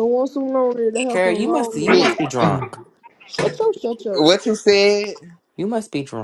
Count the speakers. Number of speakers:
3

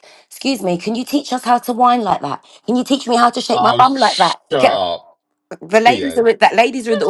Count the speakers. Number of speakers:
2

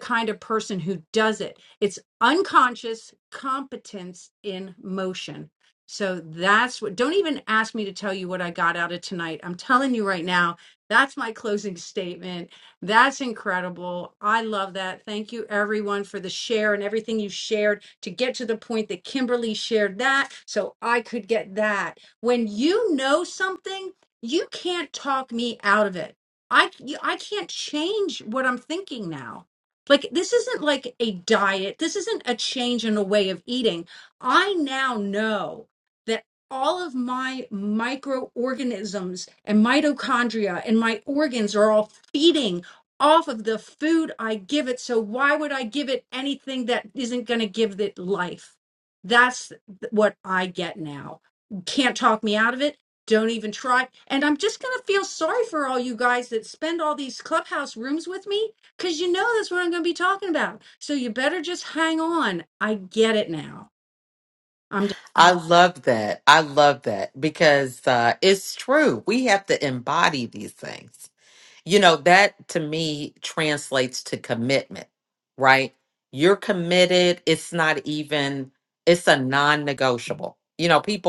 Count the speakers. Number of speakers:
2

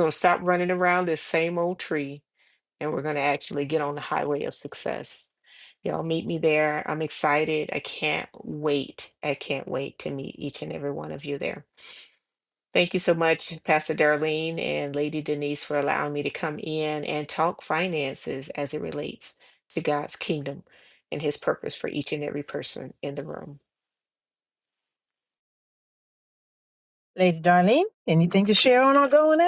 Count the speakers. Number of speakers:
2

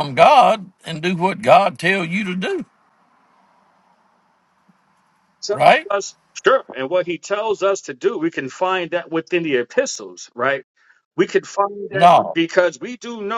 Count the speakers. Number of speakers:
2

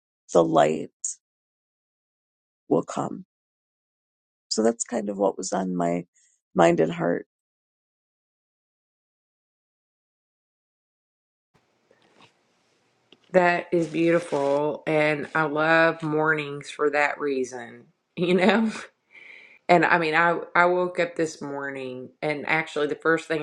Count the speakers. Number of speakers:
2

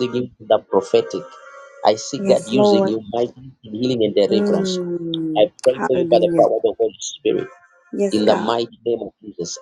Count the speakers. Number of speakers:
2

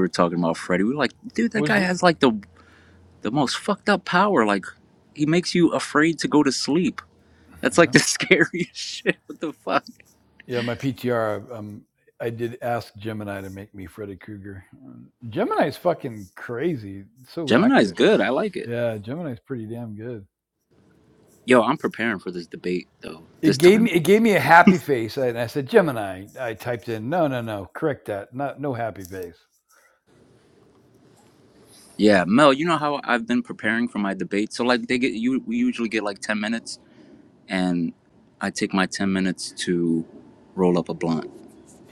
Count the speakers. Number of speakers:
2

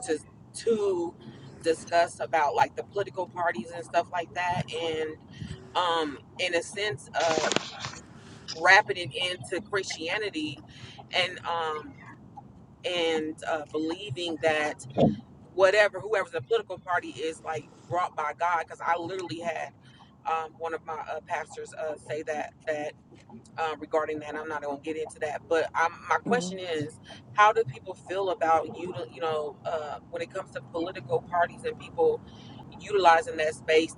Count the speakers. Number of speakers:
1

